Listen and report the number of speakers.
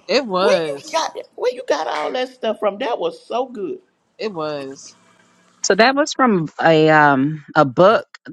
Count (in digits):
3